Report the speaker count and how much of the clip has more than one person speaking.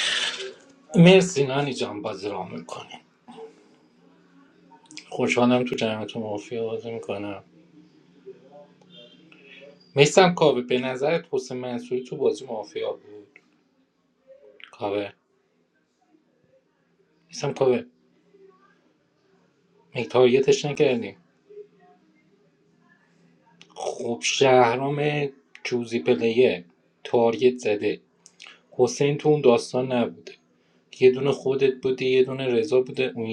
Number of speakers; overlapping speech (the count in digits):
1, no overlap